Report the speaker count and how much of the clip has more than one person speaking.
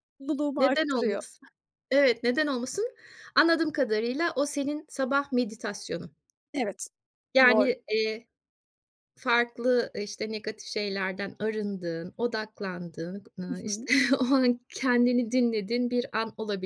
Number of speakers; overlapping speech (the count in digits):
2, about 8%